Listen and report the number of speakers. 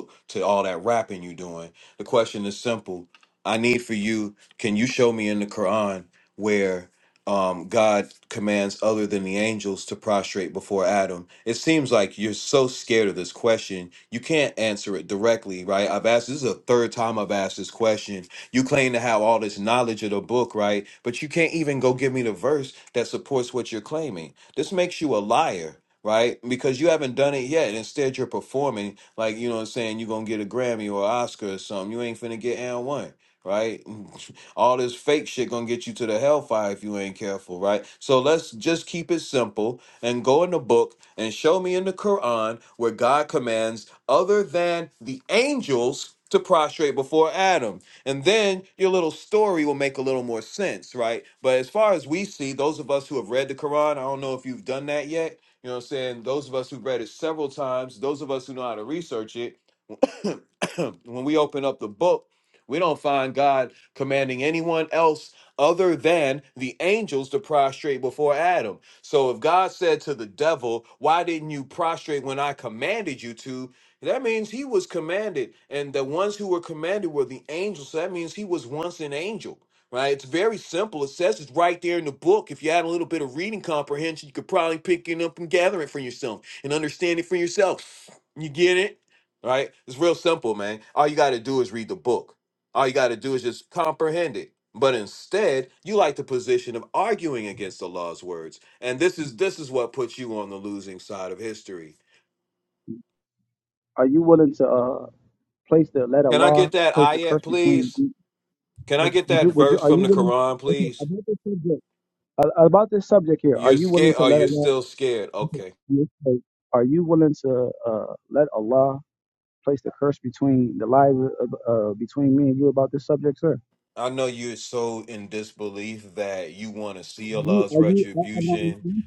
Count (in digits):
2